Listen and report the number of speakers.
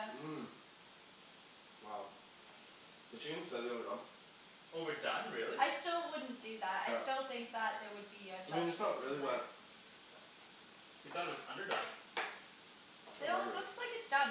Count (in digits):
3